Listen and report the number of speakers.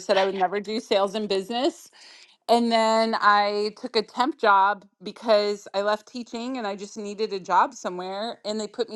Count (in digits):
1